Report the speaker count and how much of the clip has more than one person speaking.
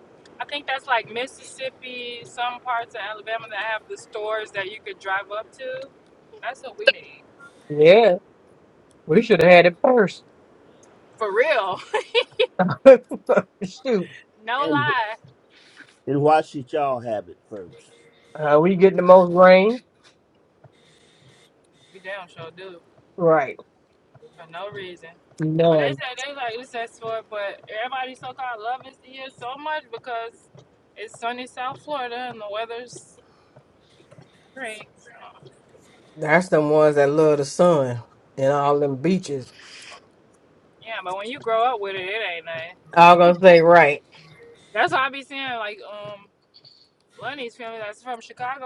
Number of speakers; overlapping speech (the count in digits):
3, about 1%